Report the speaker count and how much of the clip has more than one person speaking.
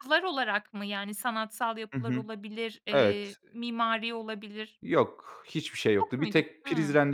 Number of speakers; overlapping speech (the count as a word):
two, about 22%